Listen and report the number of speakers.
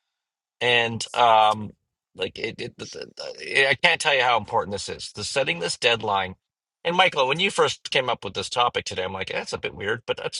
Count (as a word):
one